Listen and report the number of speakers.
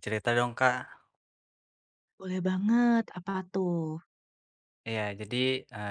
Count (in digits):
2